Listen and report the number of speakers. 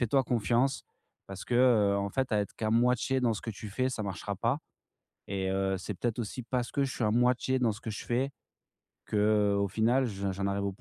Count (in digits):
1